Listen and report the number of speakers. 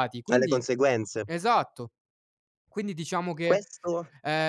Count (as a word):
two